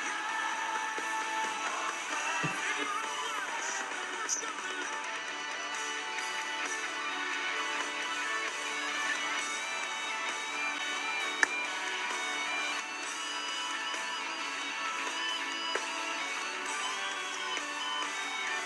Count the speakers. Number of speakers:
0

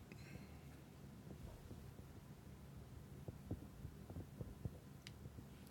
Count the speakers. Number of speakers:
0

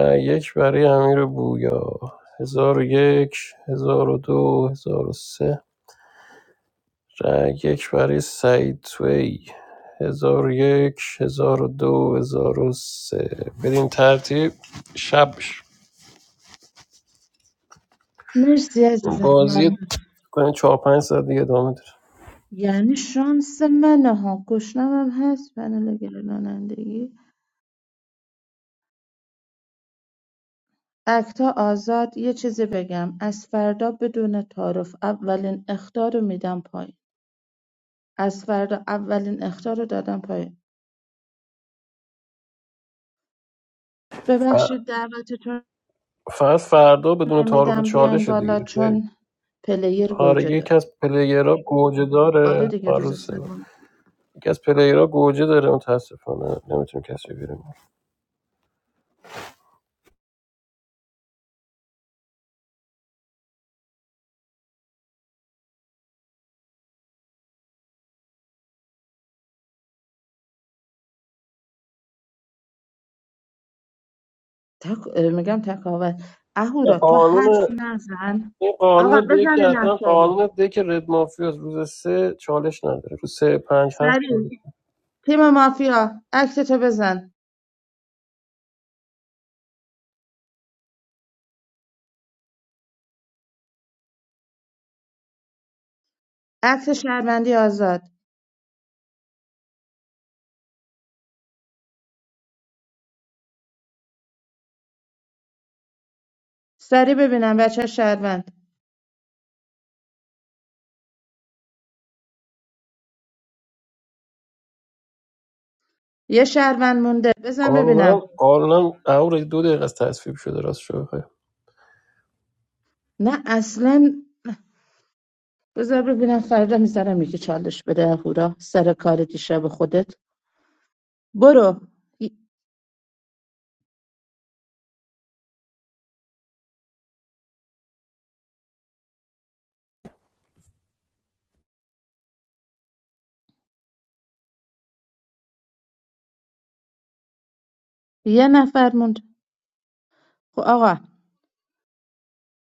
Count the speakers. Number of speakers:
2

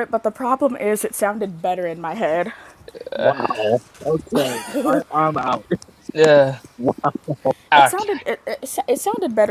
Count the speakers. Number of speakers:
3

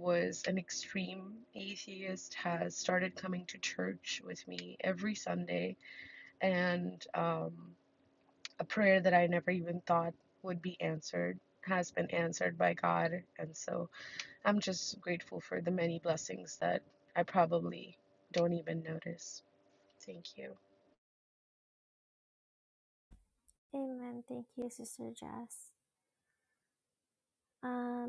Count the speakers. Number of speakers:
2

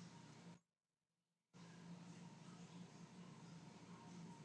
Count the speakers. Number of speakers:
0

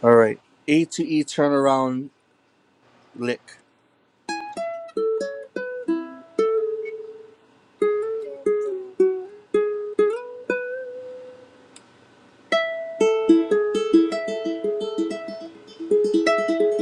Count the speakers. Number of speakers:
1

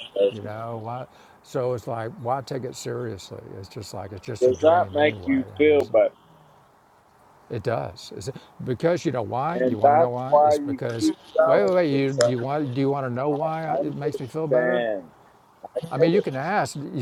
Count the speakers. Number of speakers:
2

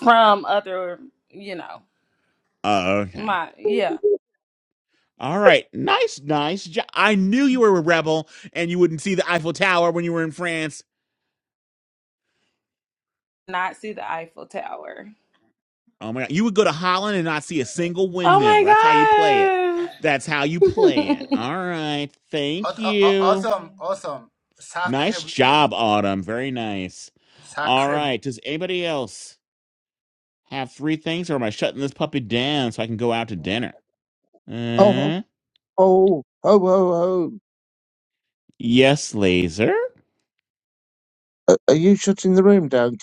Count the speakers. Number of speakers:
4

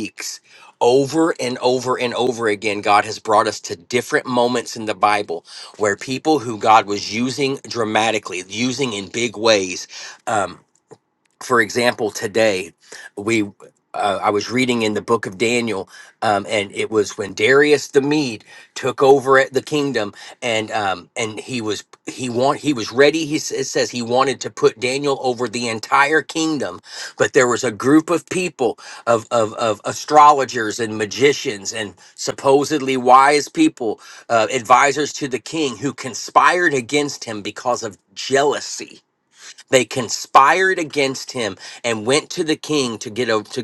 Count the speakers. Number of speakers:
1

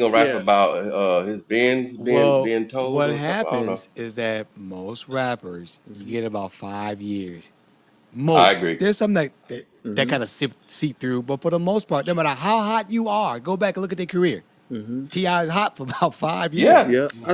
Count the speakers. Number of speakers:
3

